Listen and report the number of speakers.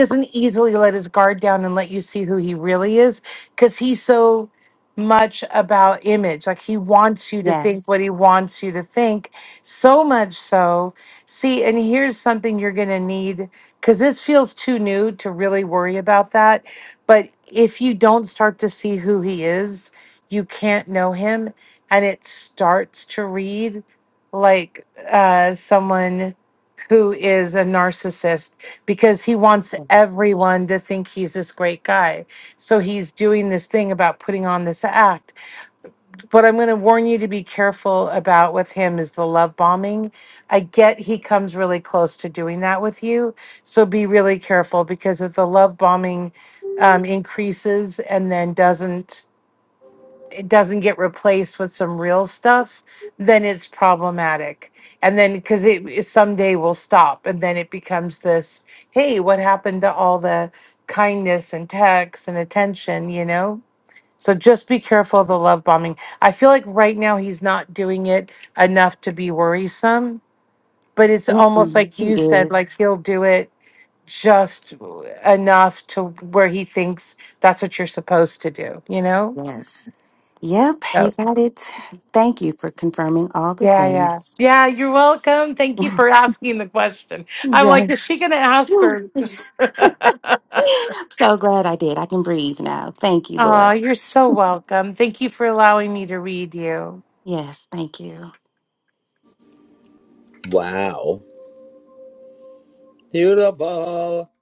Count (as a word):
three